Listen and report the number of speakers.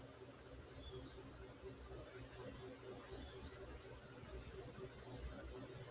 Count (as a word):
zero